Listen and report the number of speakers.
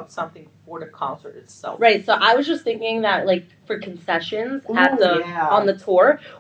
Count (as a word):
two